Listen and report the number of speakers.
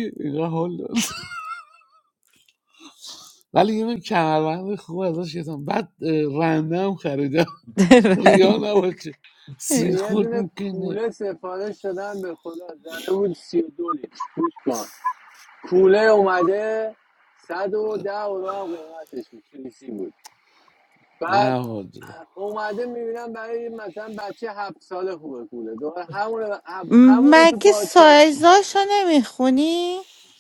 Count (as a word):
three